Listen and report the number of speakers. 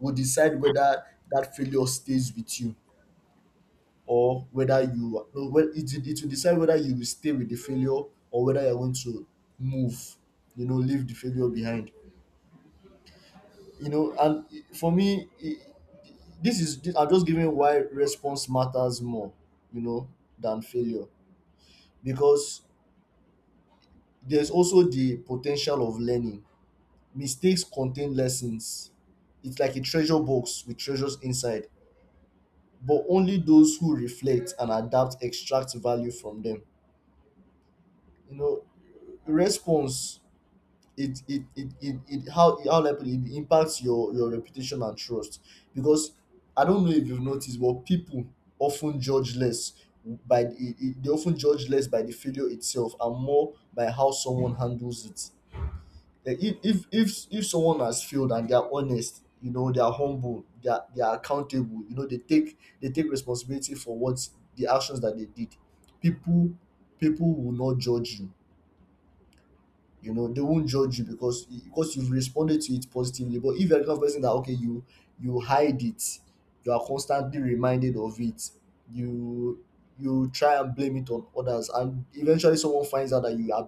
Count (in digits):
1